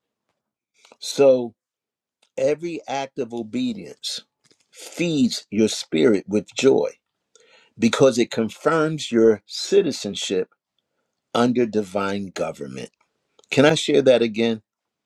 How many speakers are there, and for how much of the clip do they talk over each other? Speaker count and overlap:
1, no overlap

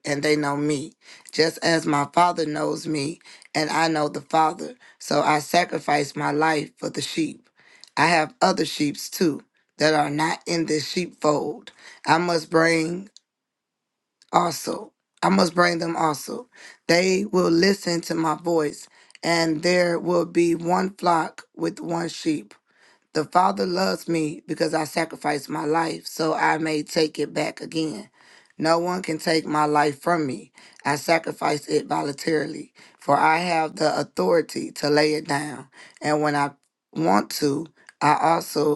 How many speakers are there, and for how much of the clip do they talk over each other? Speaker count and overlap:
1, no overlap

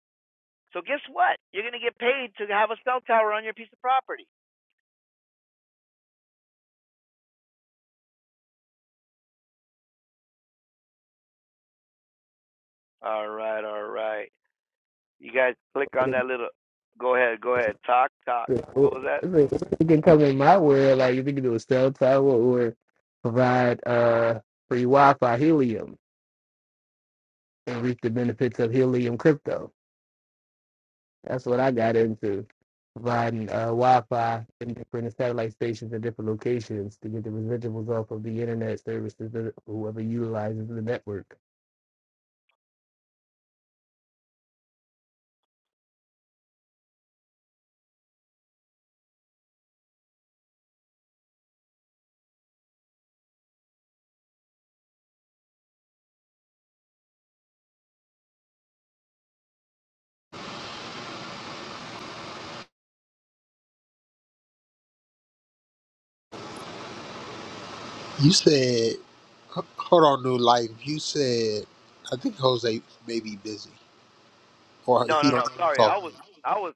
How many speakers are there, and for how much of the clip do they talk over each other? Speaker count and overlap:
3, about 2%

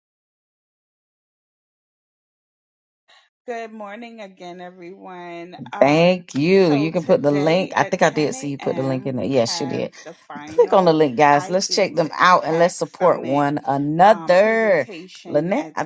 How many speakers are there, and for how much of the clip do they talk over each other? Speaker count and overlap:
2, about 50%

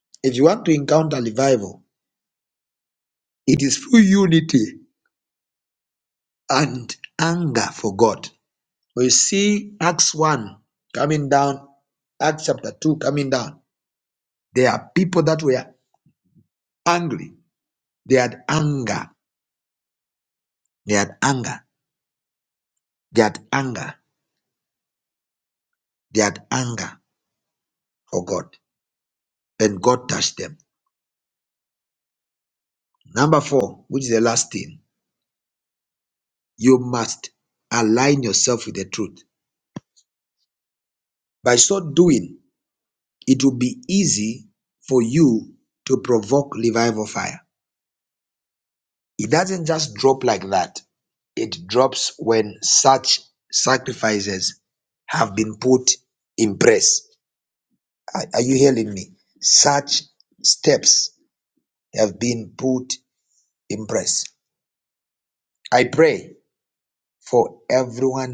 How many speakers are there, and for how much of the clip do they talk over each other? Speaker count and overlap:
1, no overlap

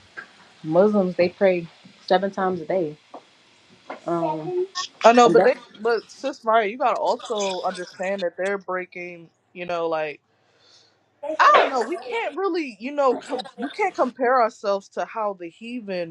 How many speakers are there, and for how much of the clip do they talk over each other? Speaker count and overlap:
2, about 2%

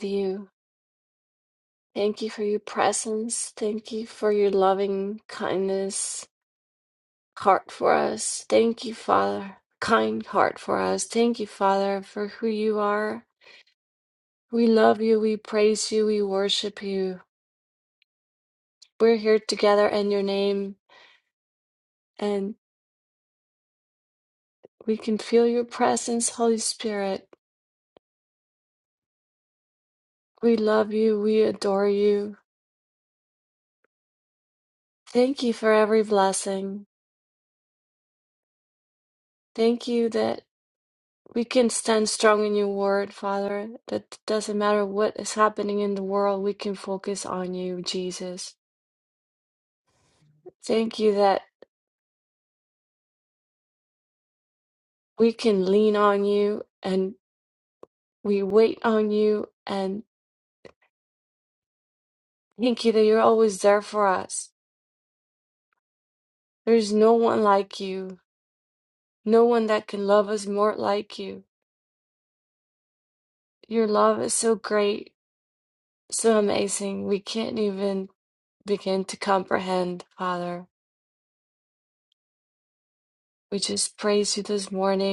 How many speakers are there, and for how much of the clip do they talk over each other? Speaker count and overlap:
1, no overlap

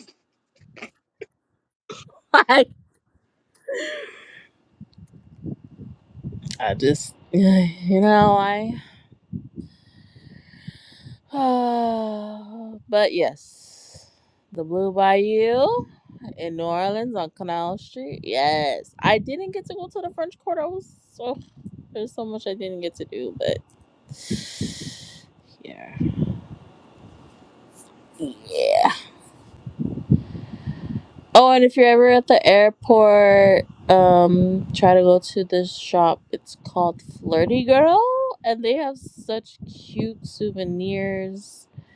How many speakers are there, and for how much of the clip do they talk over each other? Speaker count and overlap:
1, no overlap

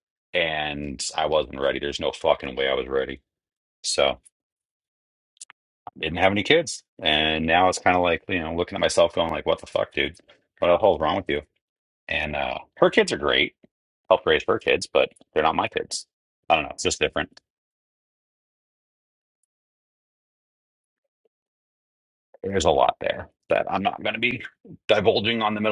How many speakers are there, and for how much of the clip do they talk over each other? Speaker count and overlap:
1, no overlap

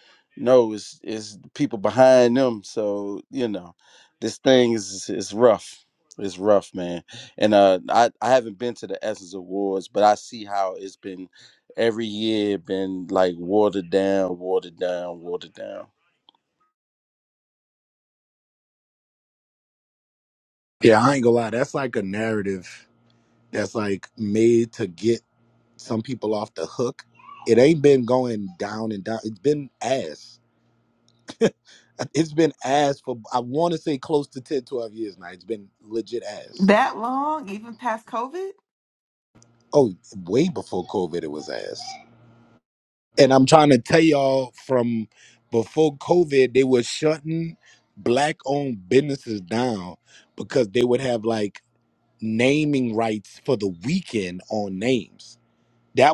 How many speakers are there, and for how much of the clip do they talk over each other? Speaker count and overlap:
3, no overlap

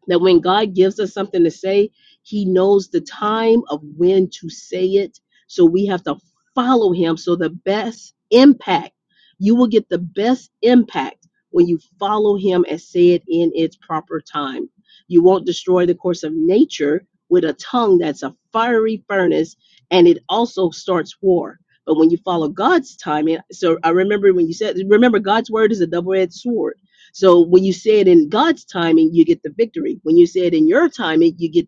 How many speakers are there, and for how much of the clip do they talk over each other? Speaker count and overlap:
1, no overlap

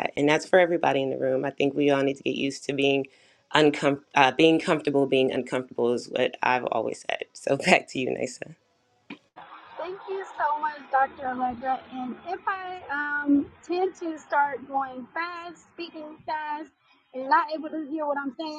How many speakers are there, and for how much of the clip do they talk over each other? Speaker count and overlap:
2, no overlap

